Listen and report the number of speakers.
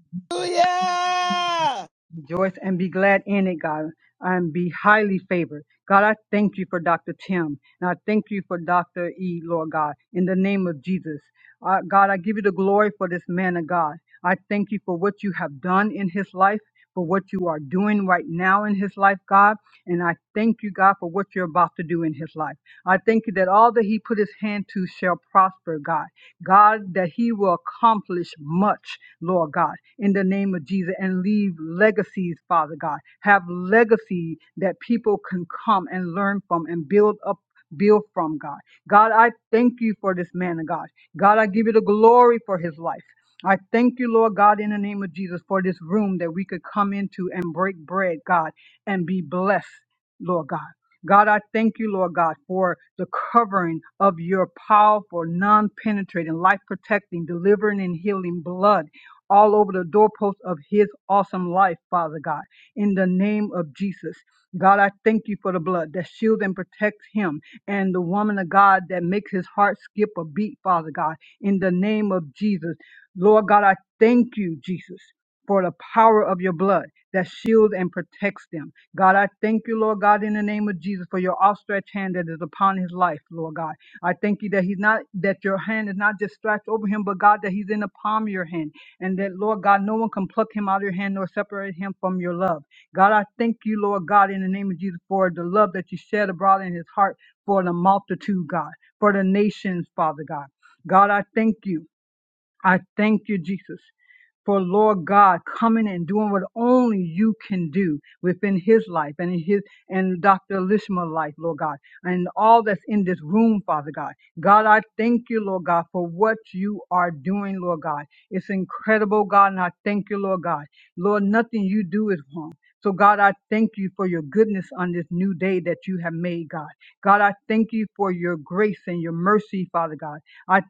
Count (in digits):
2